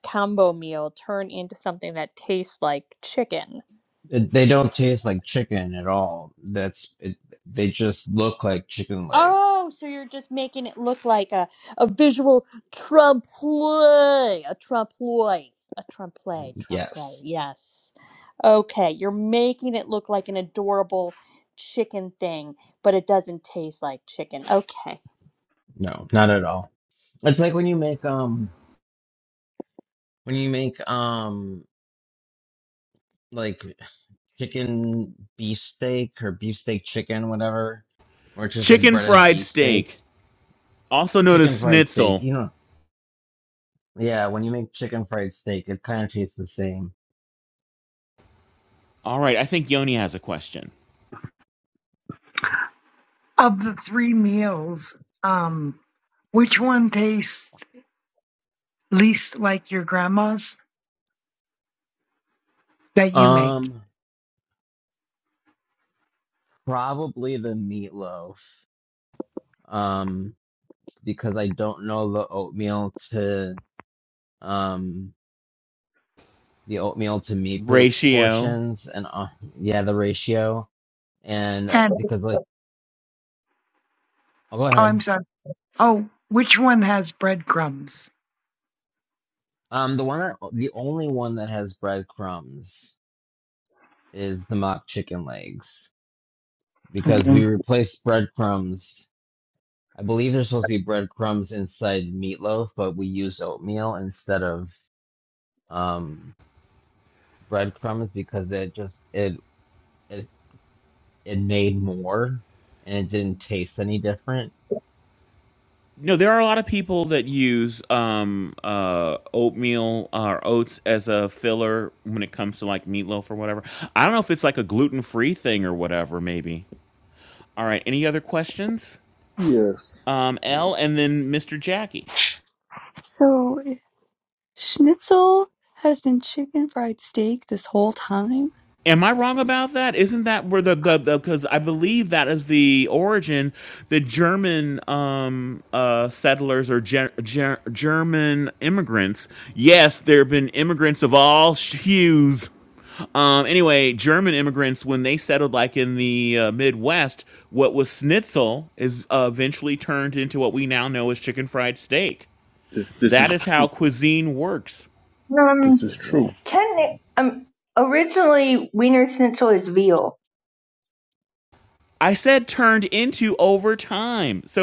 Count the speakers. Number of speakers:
7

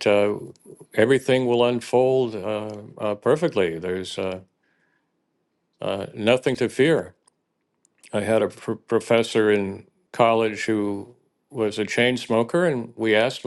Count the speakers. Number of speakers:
1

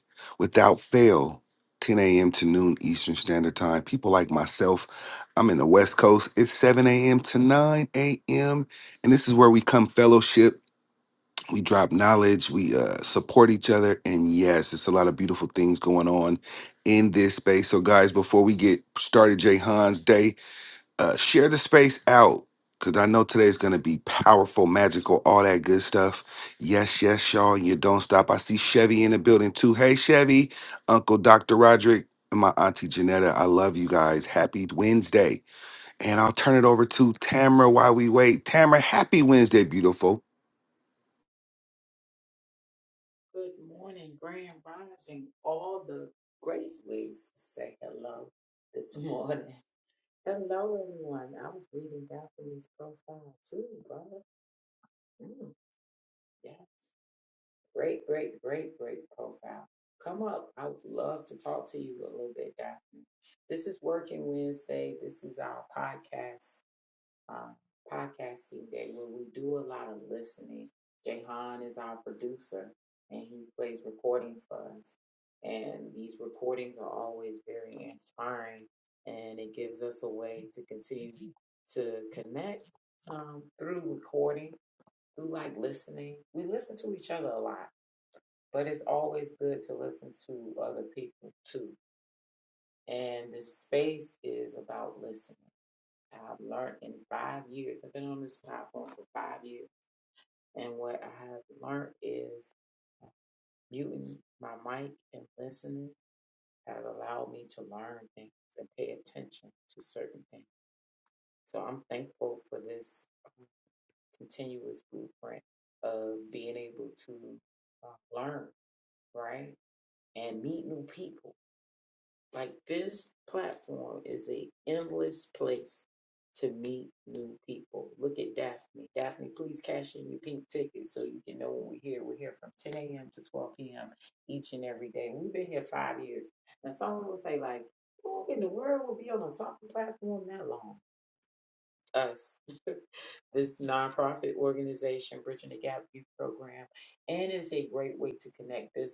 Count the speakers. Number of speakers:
2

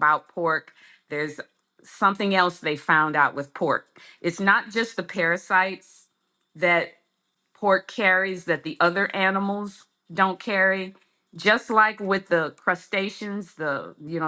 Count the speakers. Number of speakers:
1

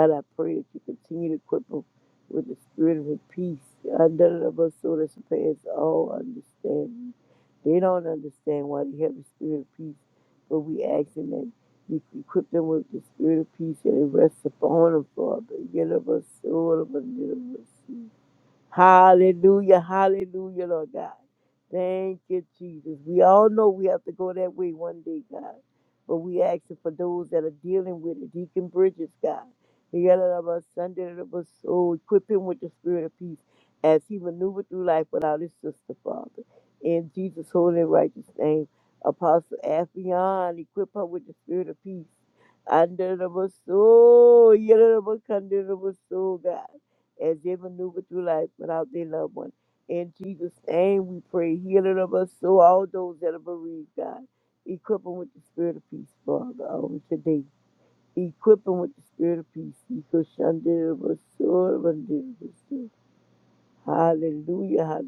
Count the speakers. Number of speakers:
1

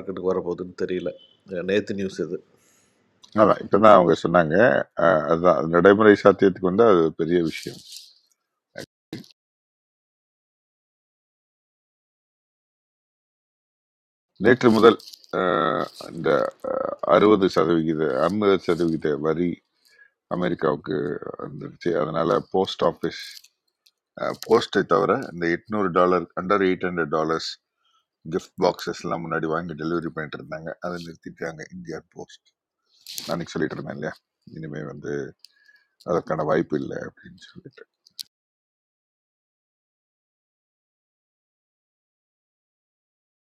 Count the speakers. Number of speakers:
2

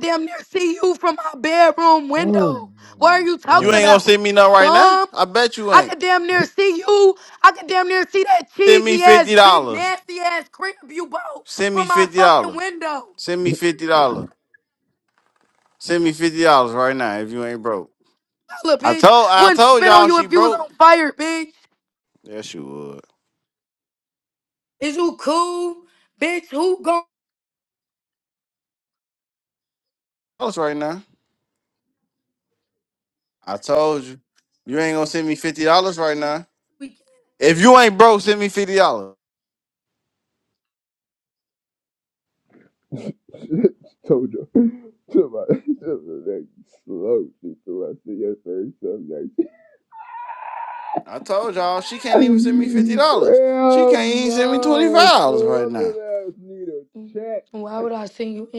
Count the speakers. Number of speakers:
3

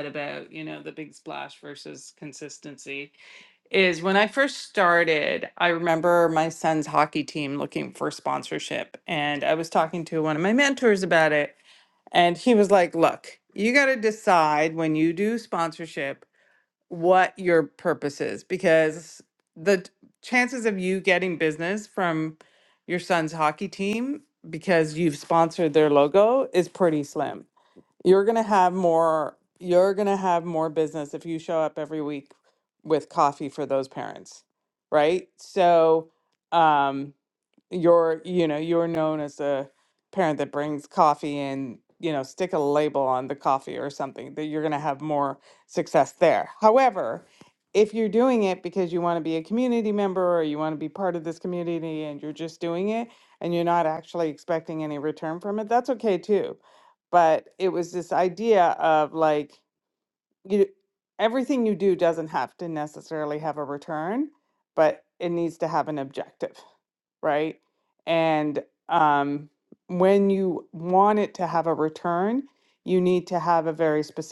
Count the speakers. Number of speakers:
1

